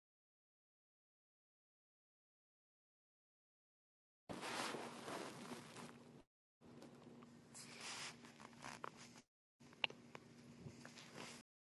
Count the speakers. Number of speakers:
zero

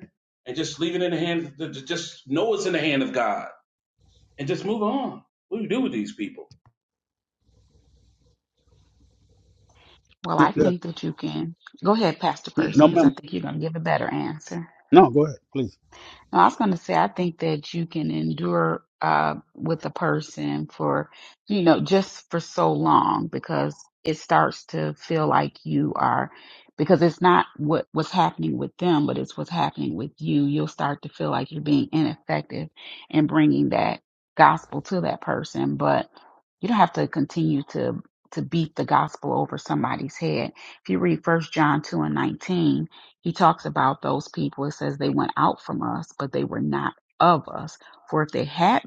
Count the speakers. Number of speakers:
three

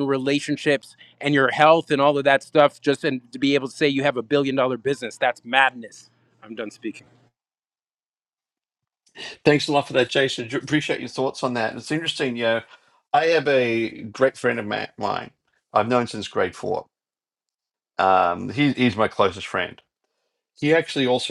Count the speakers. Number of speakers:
two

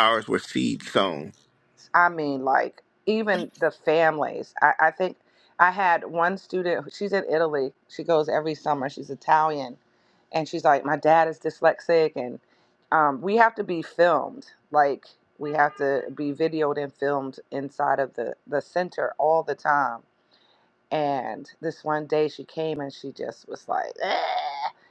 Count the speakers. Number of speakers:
two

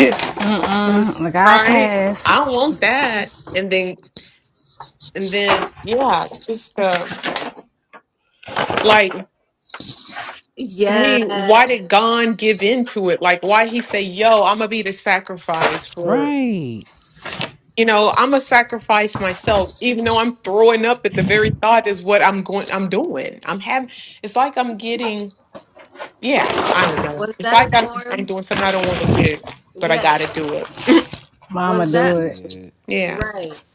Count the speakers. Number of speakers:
four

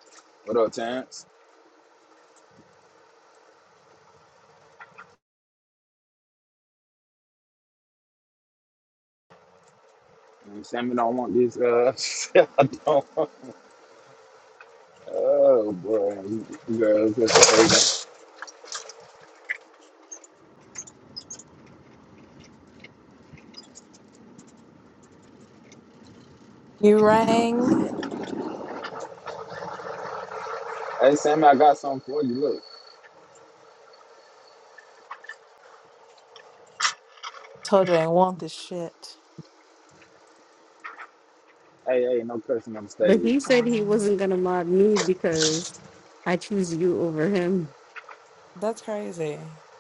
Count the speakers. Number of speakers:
three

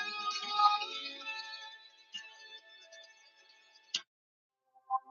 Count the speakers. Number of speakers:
zero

